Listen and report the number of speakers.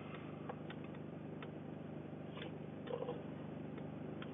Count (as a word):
zero